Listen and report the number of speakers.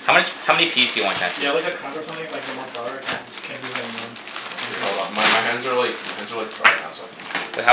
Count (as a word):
three